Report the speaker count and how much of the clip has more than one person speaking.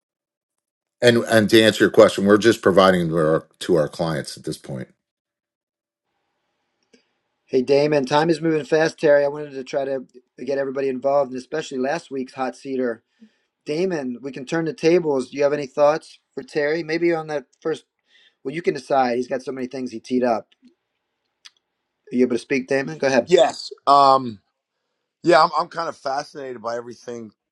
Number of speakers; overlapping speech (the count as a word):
three, no overlap